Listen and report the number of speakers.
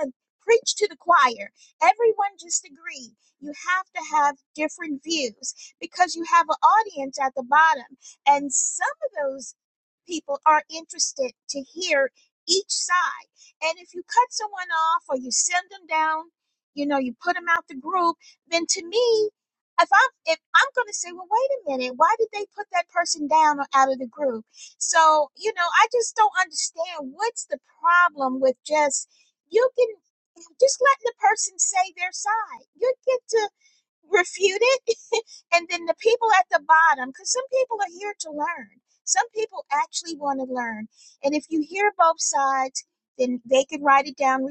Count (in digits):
1